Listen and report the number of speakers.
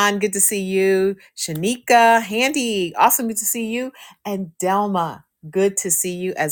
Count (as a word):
one